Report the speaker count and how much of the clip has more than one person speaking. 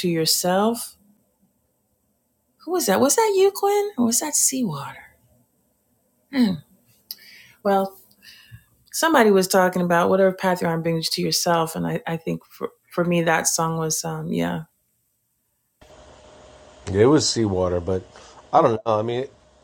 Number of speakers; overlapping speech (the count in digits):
2, no overlap